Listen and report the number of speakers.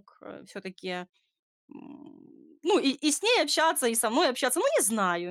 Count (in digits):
1